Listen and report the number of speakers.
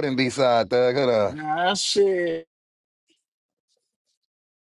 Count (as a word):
two